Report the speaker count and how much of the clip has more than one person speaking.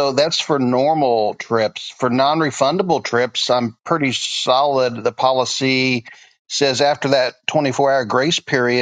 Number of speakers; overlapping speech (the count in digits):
1, no overlap